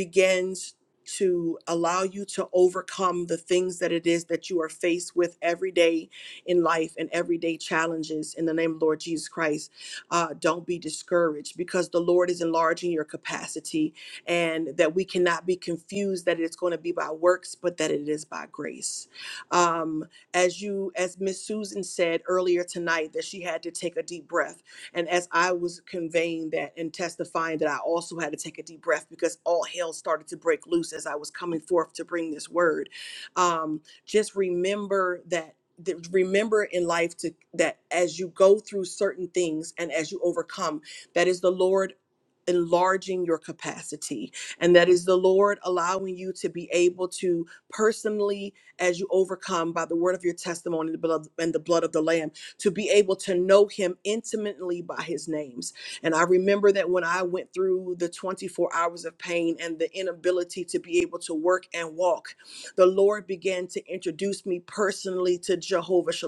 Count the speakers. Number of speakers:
one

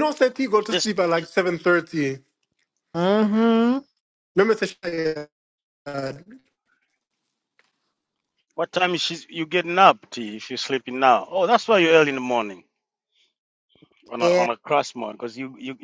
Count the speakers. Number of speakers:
three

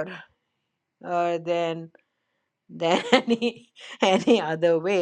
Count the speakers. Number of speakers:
one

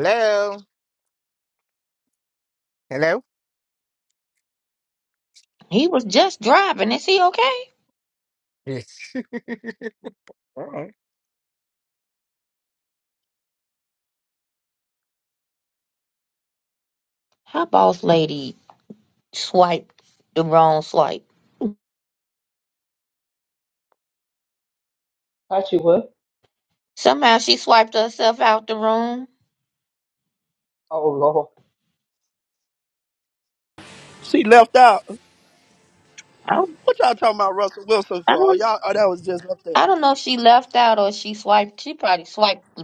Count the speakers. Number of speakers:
four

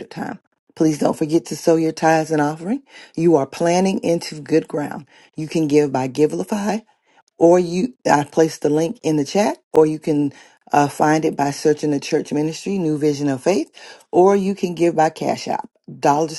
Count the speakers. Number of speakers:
one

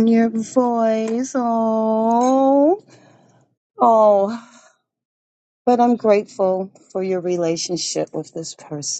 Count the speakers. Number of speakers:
one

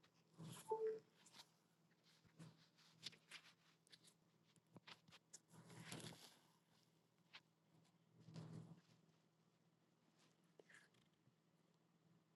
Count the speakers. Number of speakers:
zero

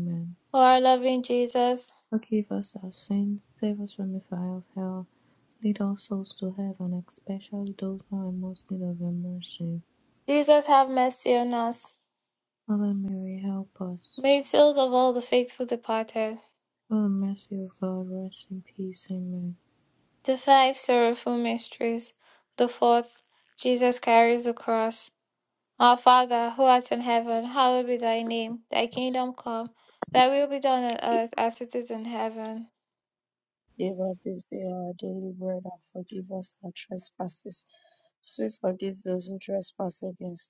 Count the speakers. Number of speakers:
three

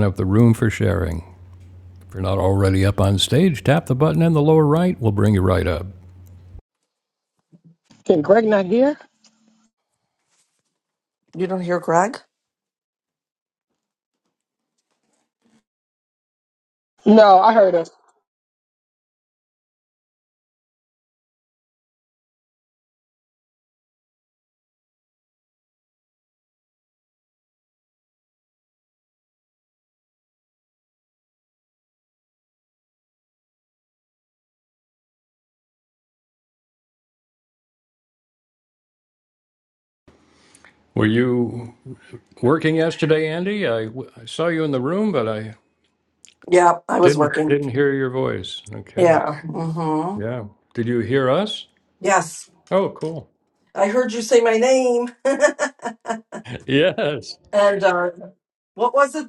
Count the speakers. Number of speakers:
three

